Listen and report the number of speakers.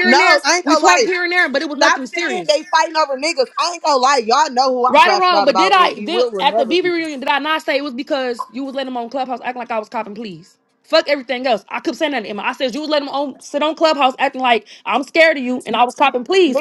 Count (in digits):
2